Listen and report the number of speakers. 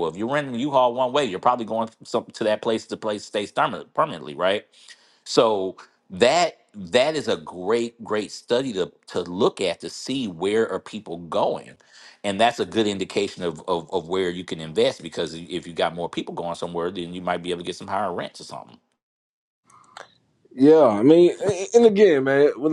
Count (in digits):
2